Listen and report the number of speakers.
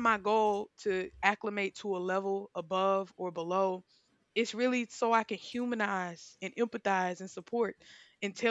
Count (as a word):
one